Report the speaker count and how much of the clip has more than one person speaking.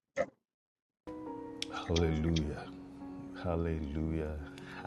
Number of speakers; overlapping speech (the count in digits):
1, no overlap